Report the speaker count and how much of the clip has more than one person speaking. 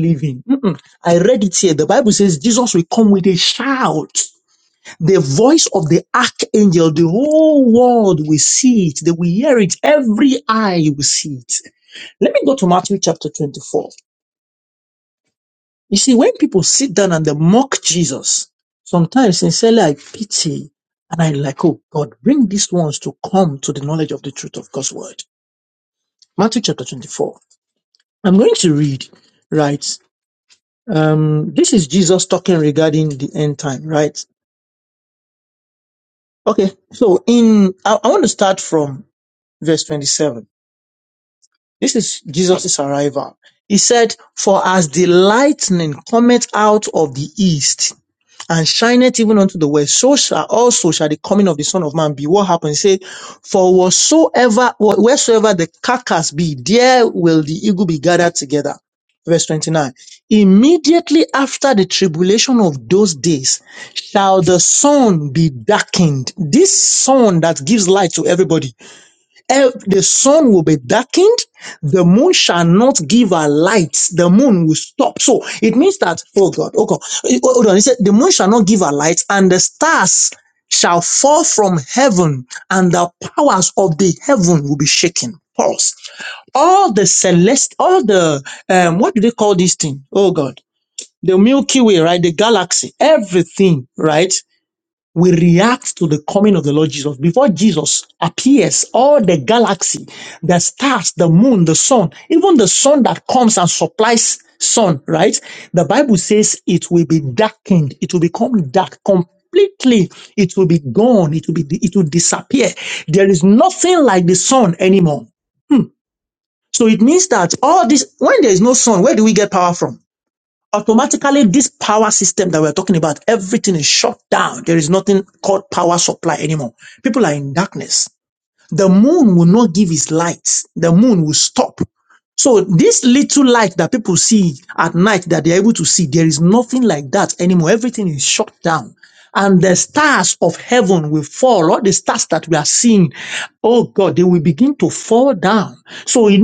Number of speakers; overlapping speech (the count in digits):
1, no overlap